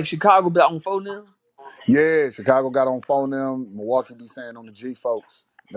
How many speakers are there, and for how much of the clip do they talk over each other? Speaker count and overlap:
2, no overlap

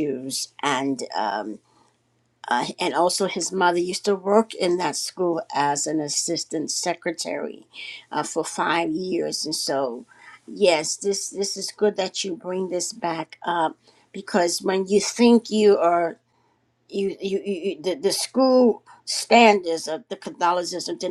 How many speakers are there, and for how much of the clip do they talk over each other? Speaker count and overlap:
1, no overlap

